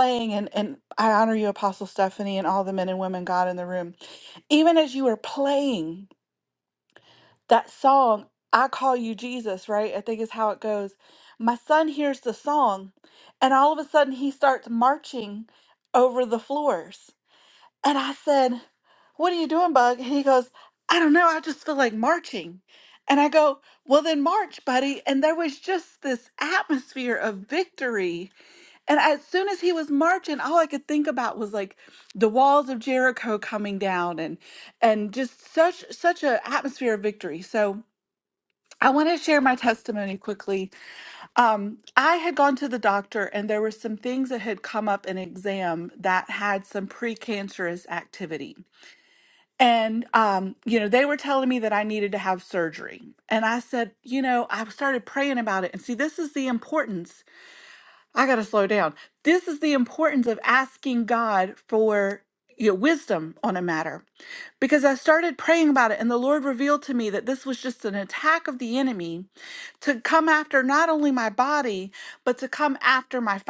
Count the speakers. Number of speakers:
1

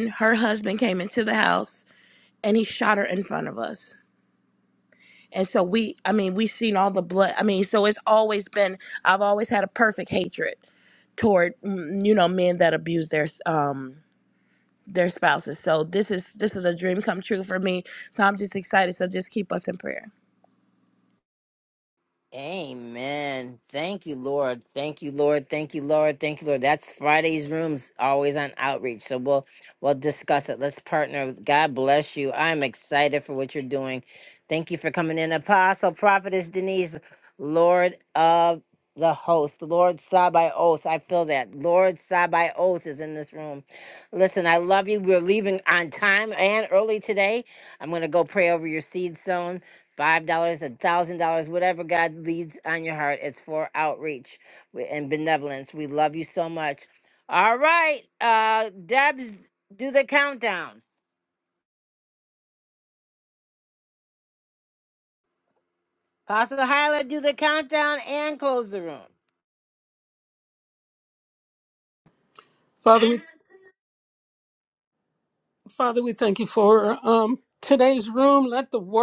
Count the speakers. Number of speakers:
3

